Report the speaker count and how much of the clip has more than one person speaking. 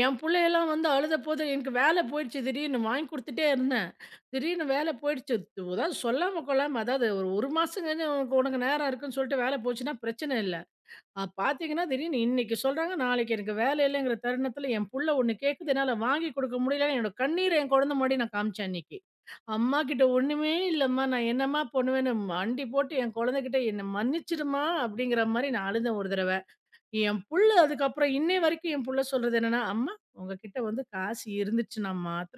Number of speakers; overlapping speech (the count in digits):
1, no overlap